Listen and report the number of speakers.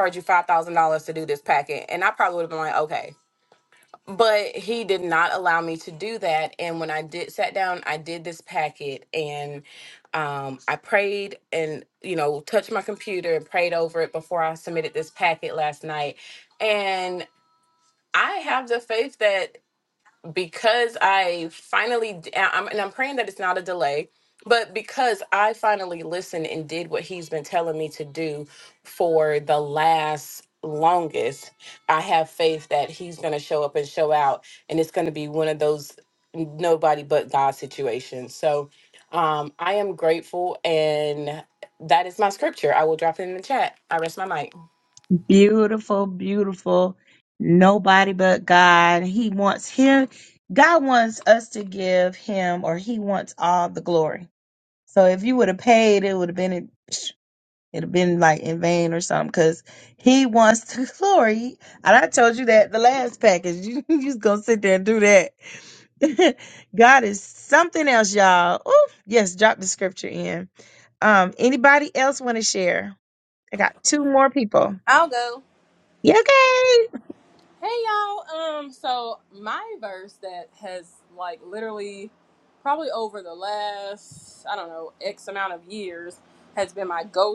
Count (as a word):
three